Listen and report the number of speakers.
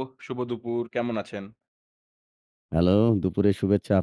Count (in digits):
2